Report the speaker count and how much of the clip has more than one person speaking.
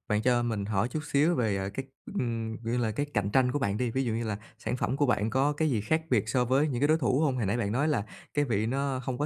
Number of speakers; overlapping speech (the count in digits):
1, no overlap